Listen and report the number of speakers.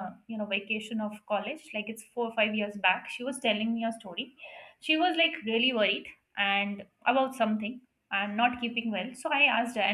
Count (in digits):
1